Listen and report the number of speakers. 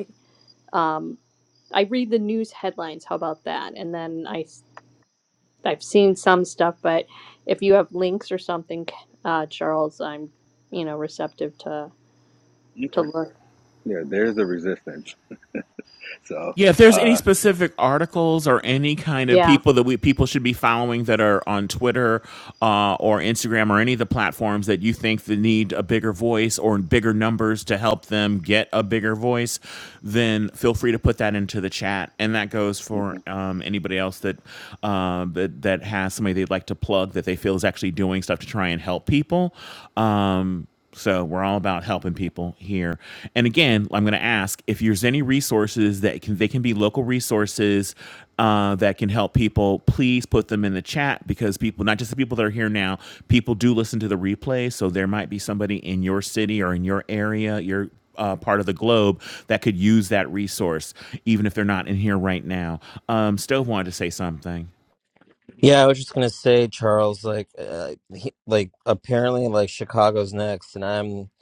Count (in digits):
4